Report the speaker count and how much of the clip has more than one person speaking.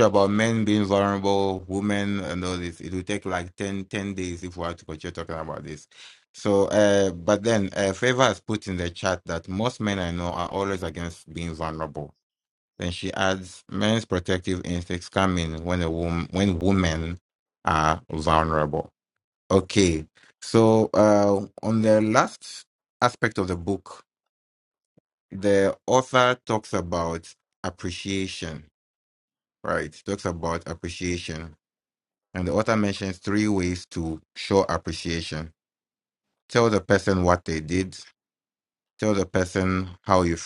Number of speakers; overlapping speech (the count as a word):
one, no overlap